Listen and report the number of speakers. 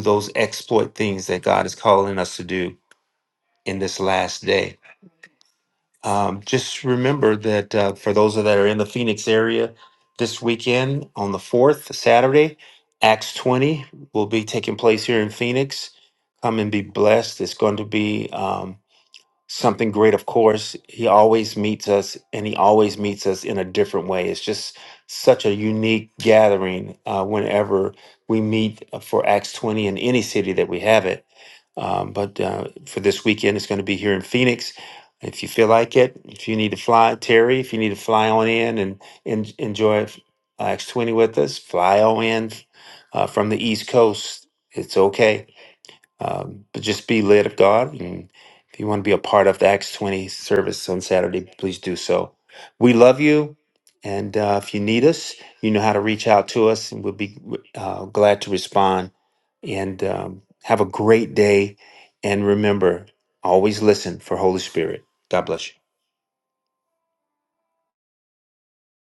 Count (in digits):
1